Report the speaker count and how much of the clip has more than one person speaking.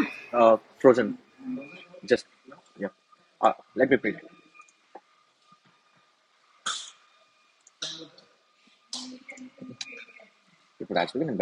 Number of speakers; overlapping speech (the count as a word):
one, no overlap